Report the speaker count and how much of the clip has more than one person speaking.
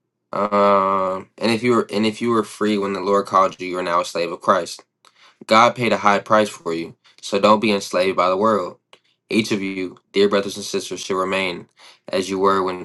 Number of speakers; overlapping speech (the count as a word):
one, no overlap